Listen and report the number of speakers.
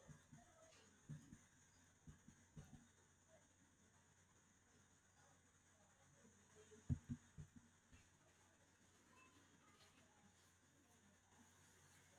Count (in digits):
0